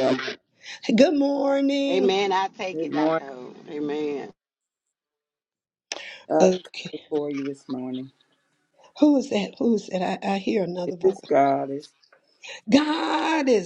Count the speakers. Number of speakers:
three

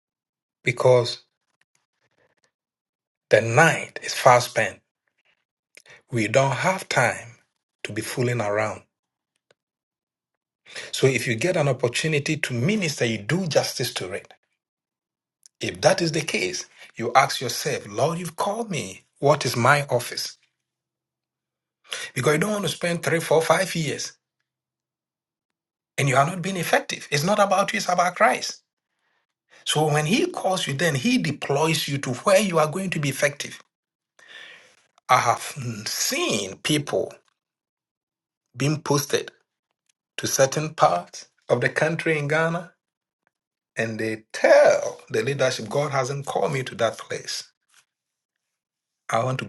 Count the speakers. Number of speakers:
one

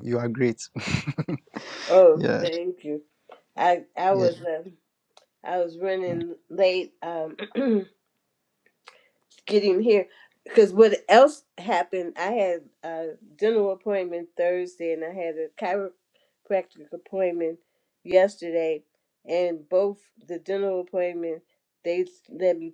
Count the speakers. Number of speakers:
two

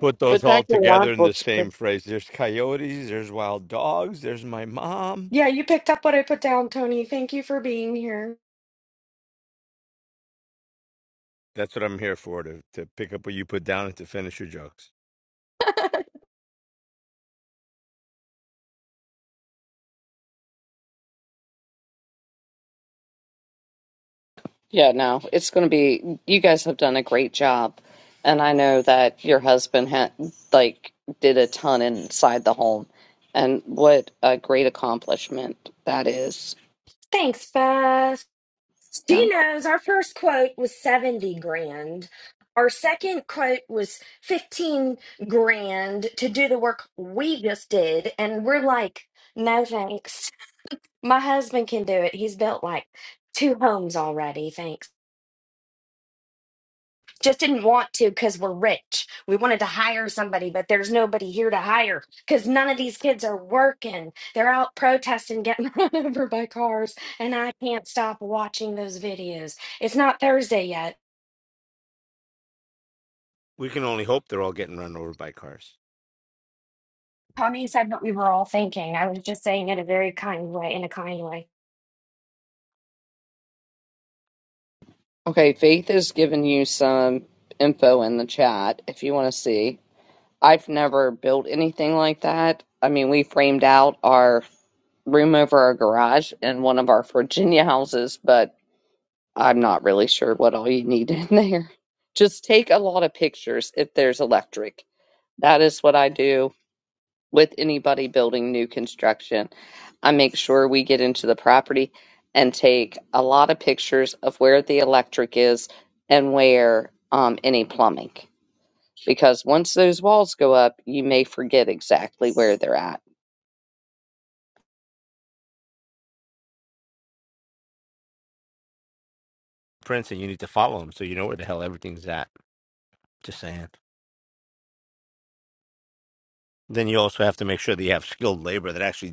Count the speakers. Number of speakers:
three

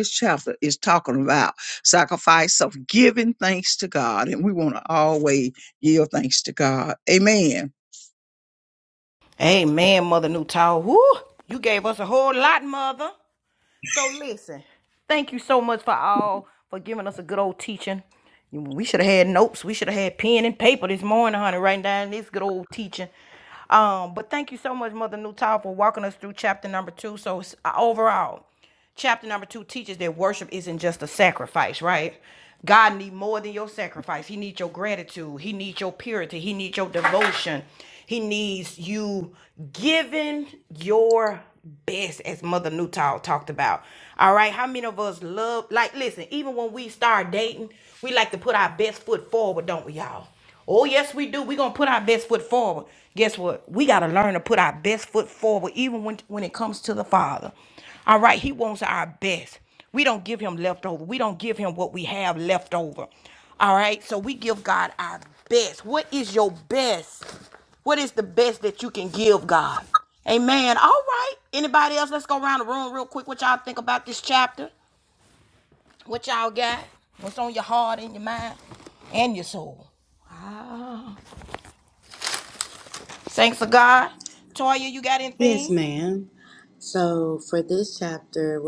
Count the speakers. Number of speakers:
three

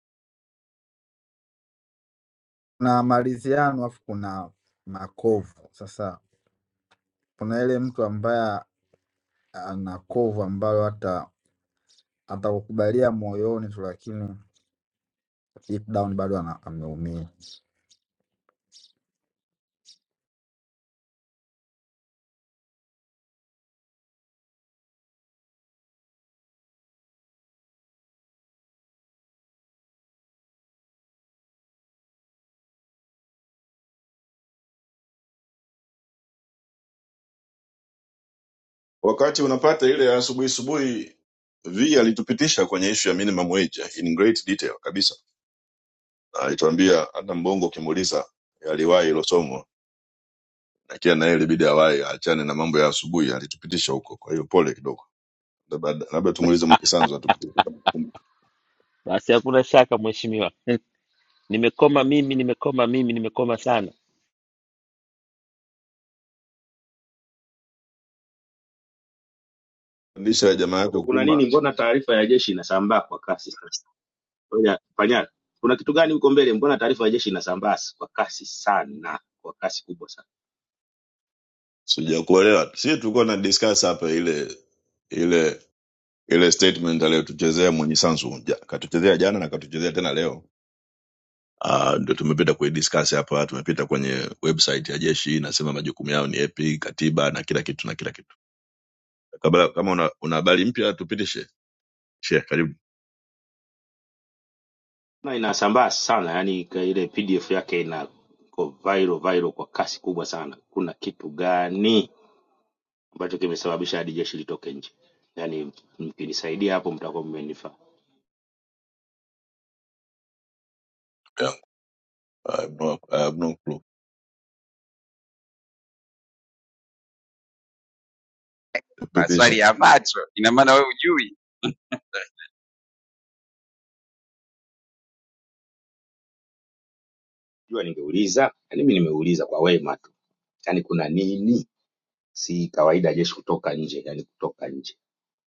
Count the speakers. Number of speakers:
five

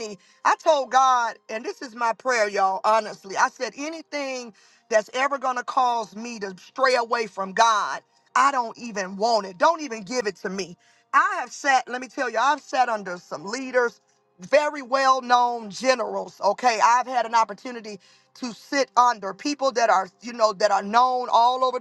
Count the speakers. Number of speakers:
one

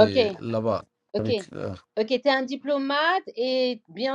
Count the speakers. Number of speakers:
two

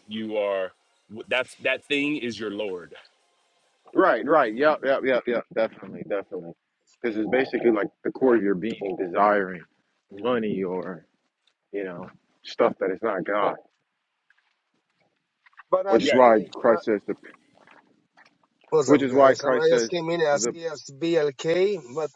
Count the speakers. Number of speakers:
three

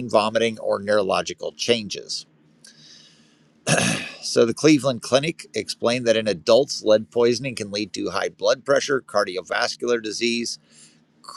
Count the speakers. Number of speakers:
one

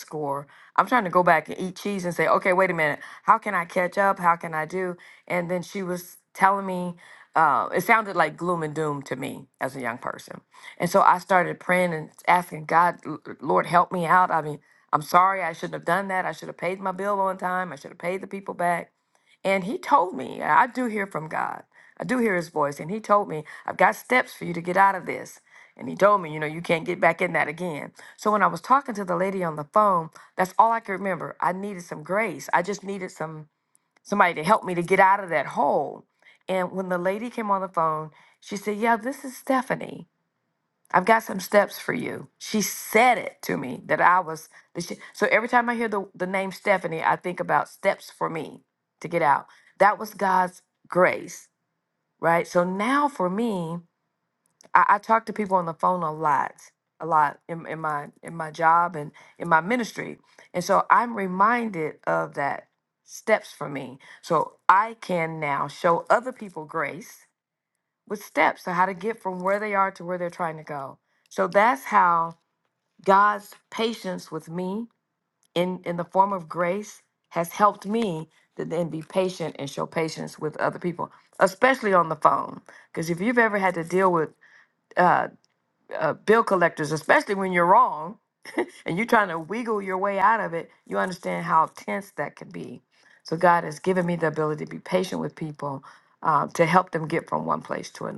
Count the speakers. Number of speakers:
one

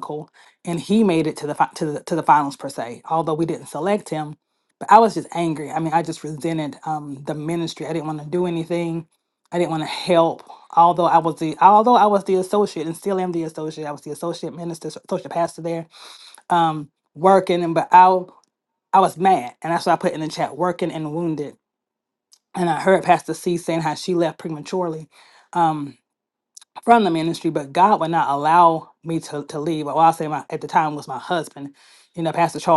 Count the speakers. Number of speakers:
one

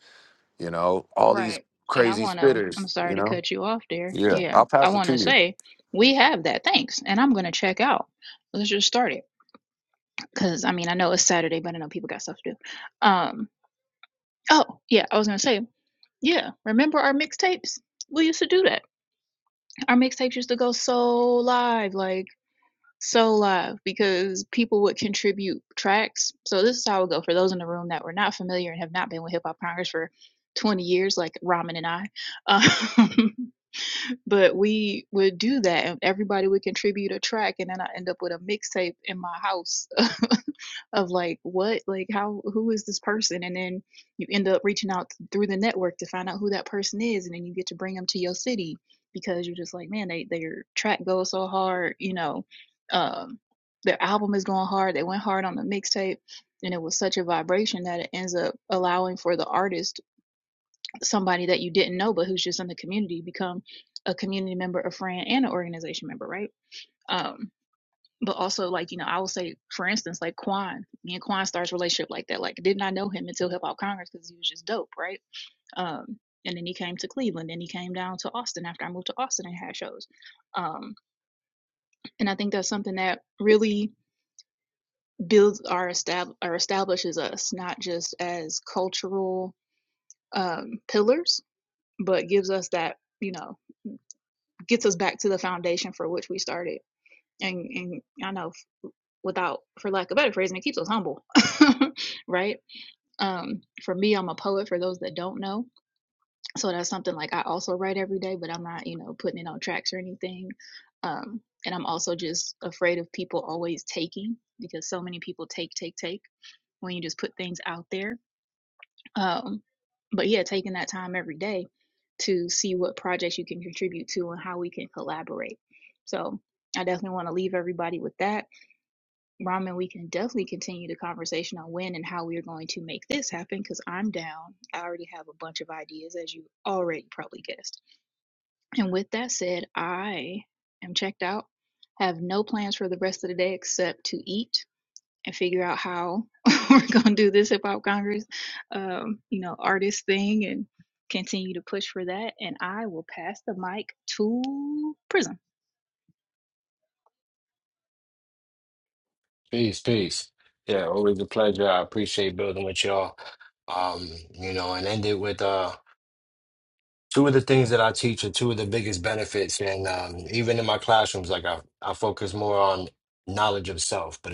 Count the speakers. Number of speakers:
three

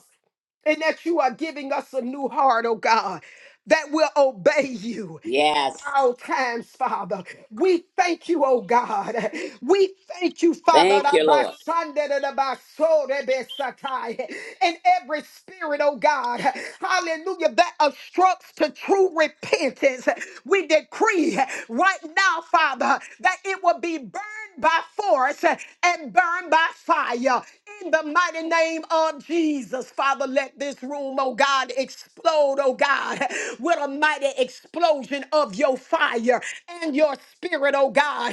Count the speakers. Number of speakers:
two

